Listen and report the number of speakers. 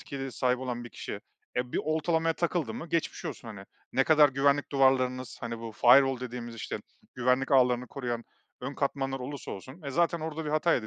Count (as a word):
one